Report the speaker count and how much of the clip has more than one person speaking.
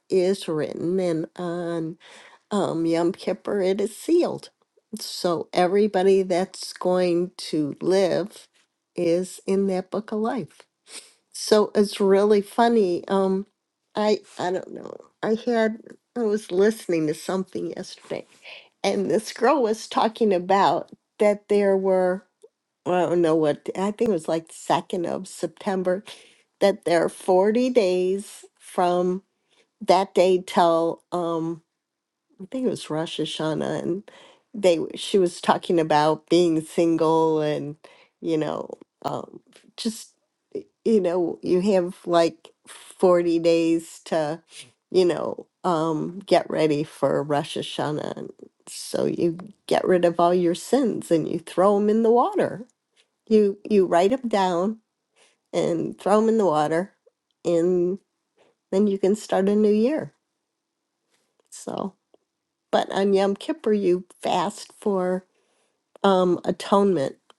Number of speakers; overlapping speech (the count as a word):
one, no overlap